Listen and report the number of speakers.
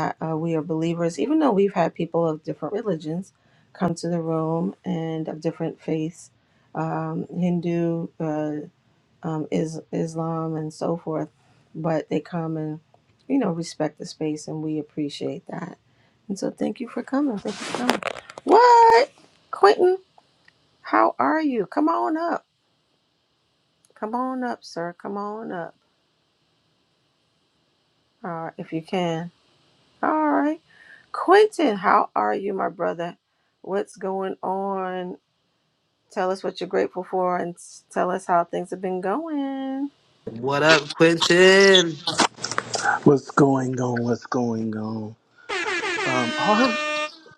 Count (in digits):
3